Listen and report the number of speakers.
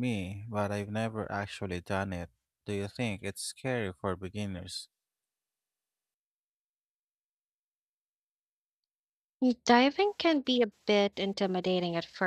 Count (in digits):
2